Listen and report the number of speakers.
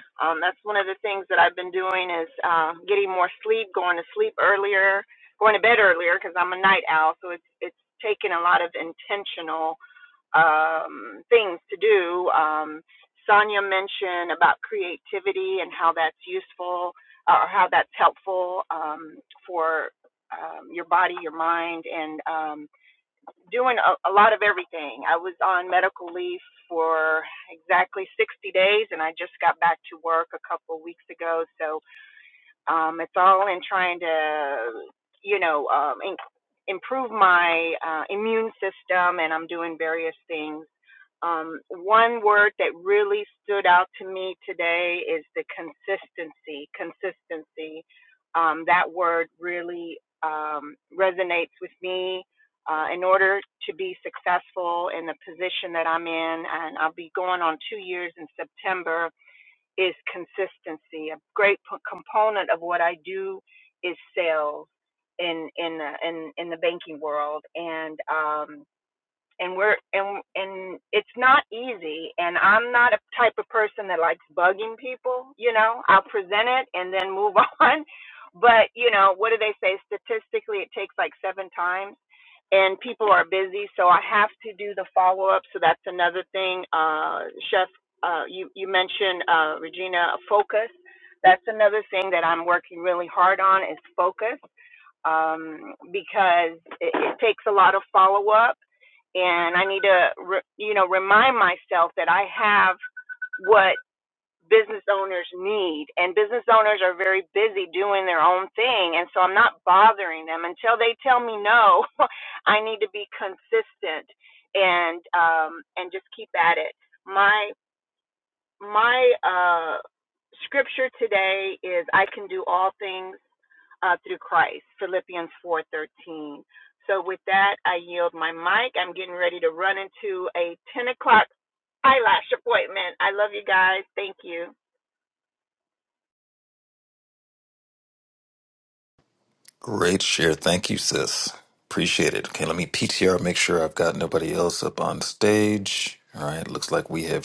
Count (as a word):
two